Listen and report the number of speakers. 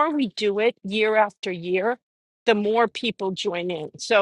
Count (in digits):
1